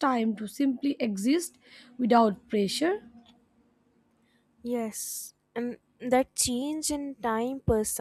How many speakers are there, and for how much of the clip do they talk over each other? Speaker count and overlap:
2, no overlap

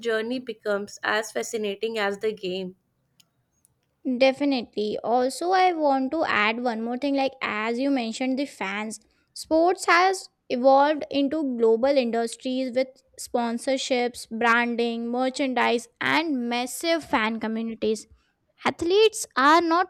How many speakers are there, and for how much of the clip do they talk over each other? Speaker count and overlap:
2, no overlap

